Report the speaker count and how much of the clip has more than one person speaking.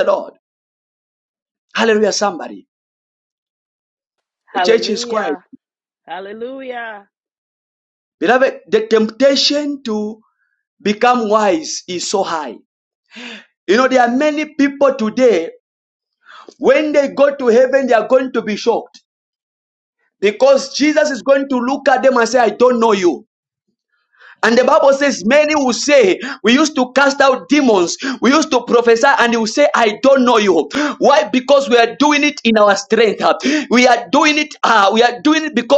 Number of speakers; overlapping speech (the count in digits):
2, about 2%